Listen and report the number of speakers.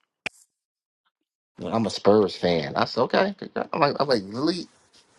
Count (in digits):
1